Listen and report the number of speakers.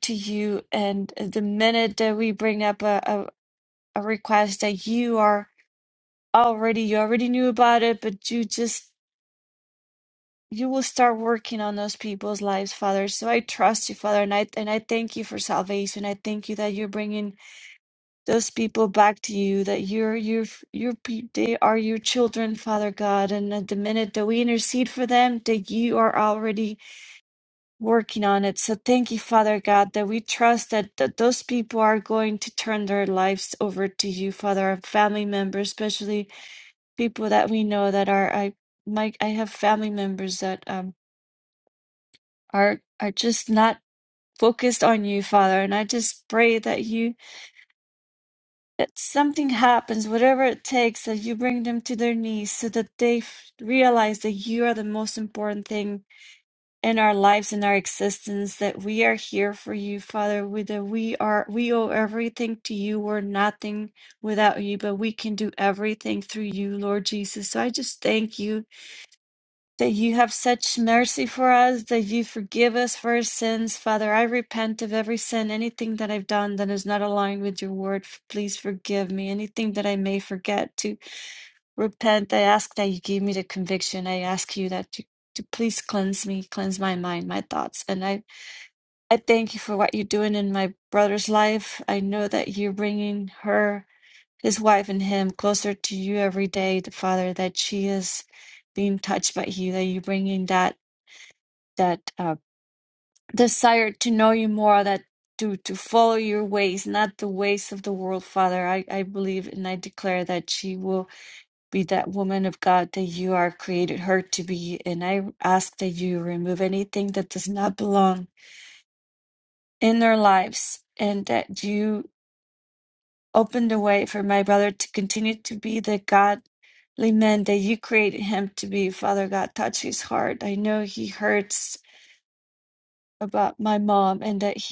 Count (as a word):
one